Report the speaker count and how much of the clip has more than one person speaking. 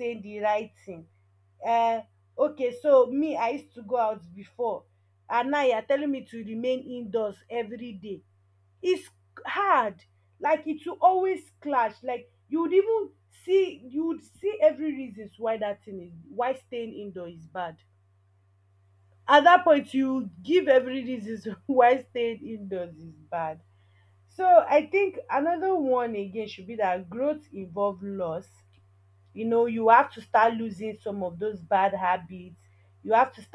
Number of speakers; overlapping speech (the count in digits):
1, no overlap